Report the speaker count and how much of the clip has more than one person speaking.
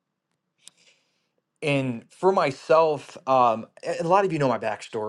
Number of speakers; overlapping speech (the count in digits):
1, no overlap